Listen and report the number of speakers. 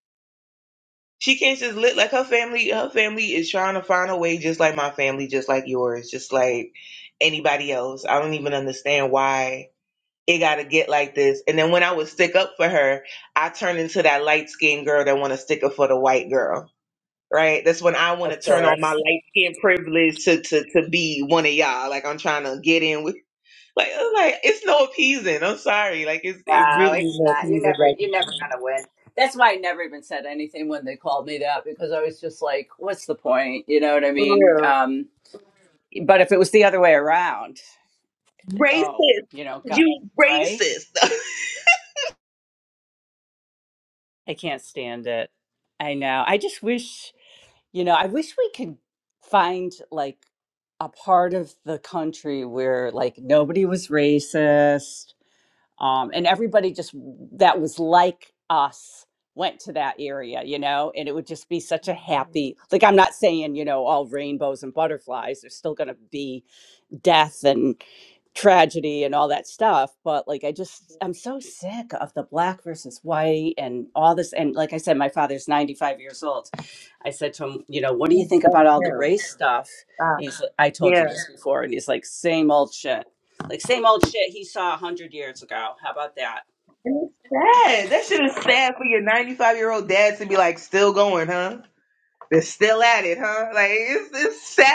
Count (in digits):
2